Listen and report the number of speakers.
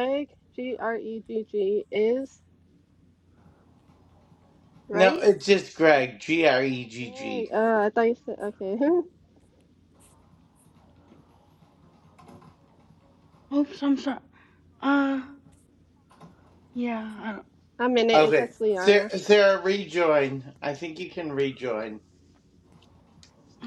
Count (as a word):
three